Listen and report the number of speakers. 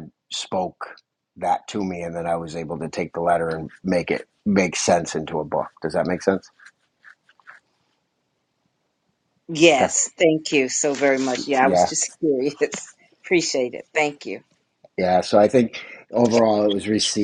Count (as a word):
two